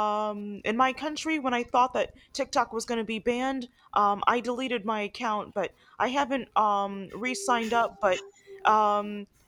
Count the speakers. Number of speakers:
1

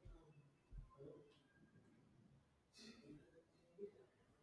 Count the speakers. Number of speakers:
0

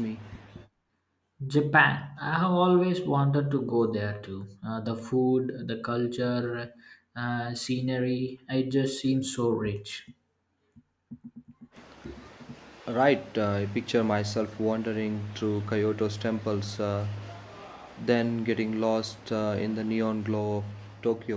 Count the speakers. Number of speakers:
2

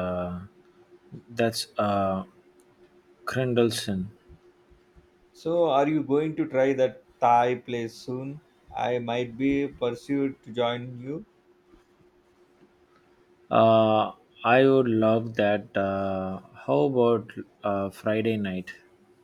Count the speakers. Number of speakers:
2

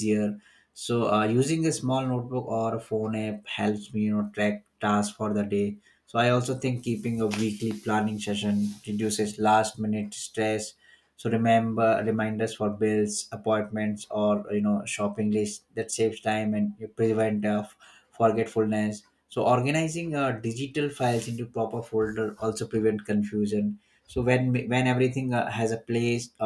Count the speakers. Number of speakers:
1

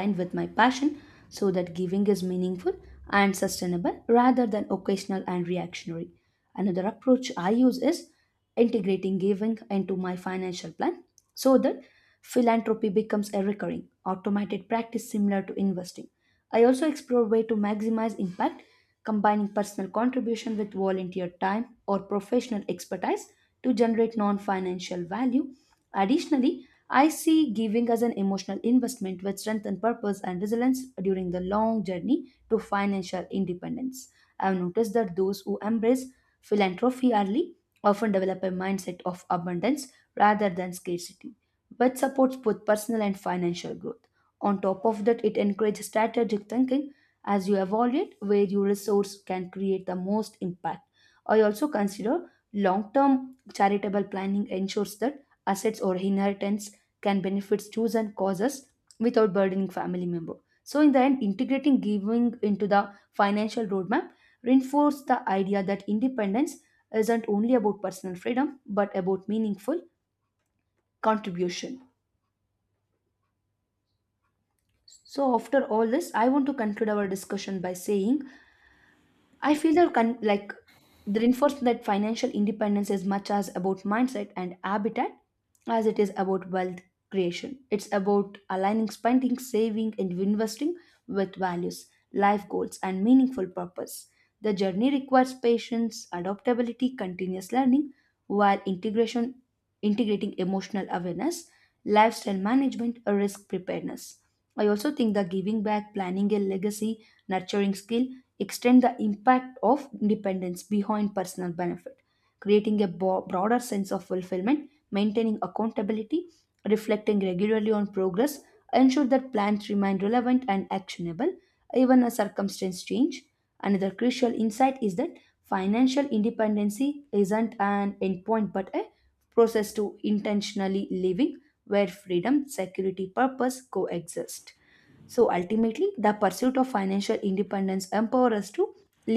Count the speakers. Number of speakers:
1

